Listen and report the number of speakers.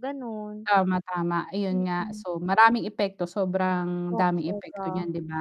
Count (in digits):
2